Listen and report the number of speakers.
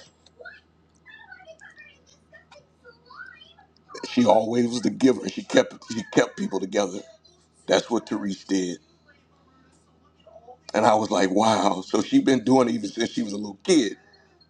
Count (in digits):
1